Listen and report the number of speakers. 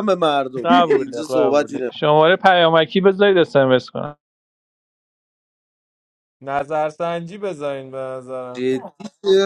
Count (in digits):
3